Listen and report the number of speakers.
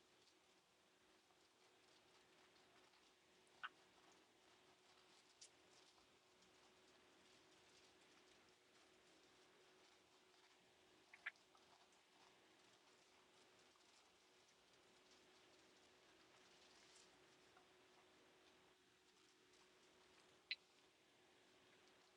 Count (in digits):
0